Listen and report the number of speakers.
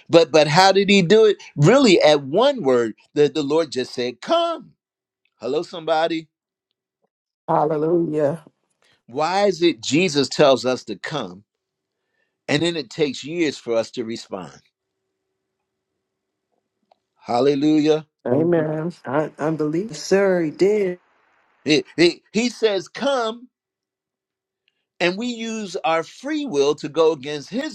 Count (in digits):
3